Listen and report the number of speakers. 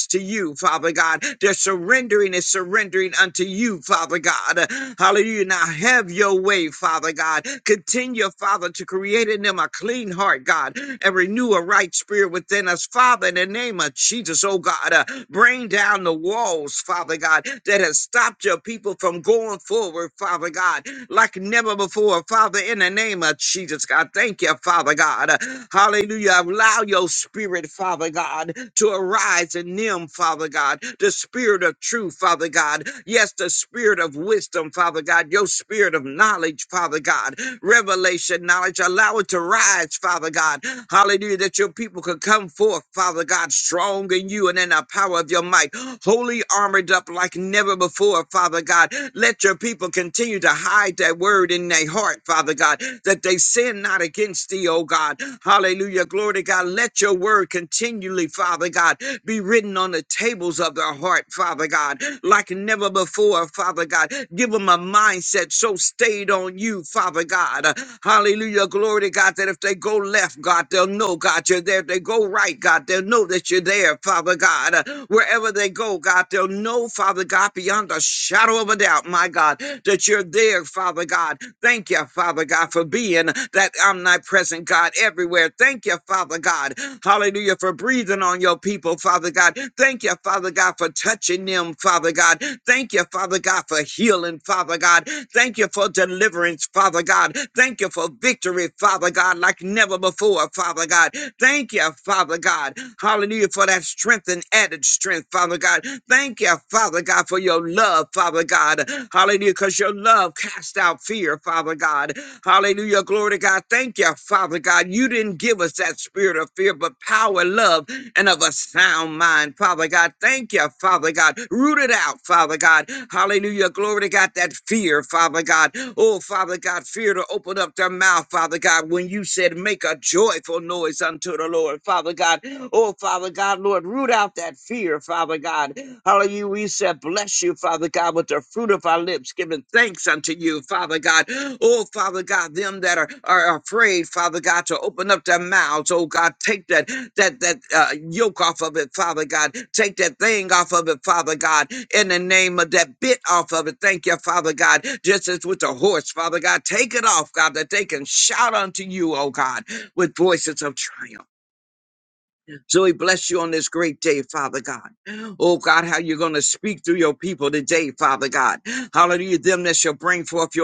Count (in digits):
1